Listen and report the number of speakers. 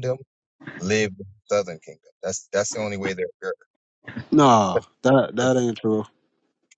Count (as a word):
two